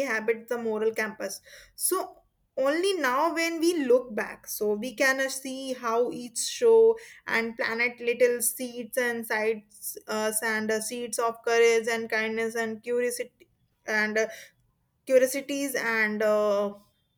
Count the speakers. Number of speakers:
1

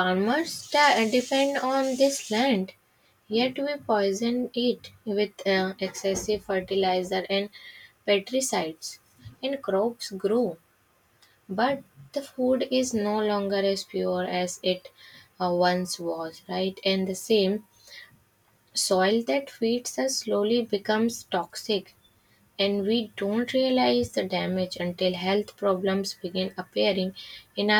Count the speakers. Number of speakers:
1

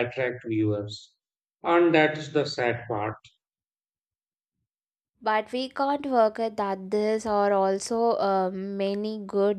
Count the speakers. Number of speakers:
2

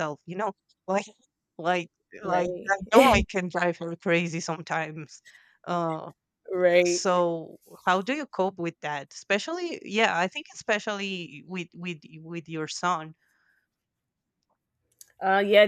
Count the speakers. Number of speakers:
2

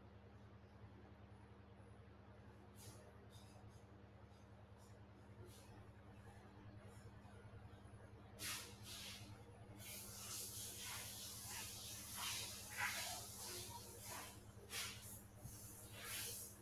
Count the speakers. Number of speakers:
0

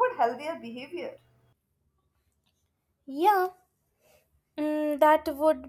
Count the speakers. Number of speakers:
2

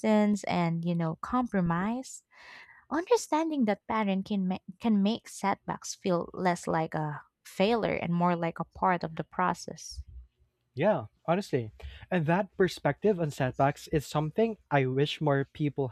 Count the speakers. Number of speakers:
2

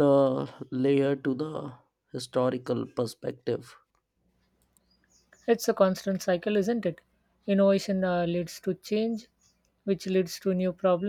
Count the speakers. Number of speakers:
2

